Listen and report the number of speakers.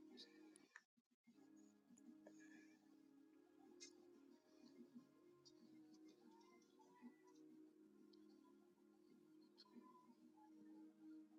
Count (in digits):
0